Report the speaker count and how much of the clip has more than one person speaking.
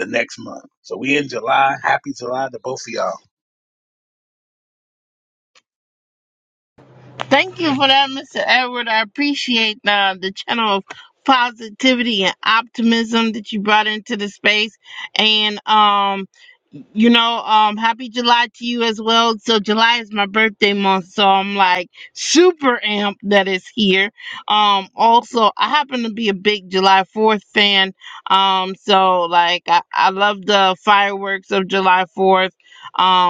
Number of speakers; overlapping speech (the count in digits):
2, no overlap